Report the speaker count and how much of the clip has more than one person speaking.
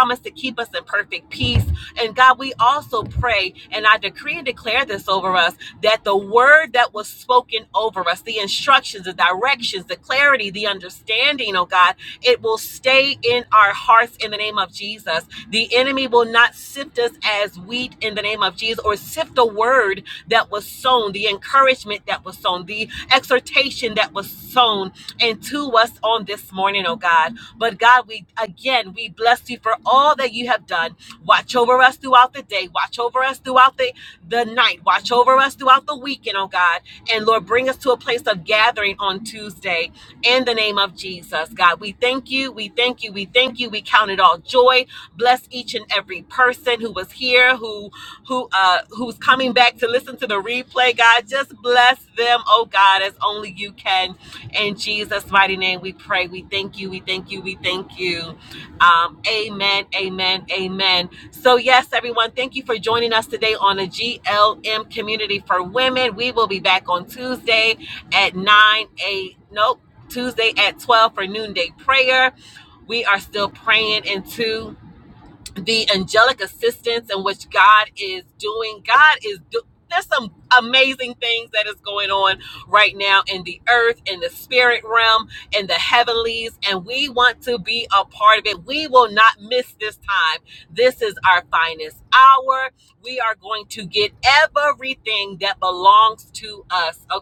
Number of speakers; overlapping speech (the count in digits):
1, no overlap